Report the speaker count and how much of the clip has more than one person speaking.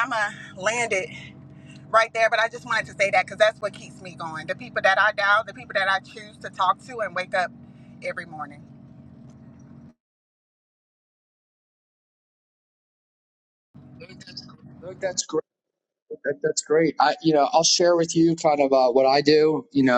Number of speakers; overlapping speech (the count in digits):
2, no overlap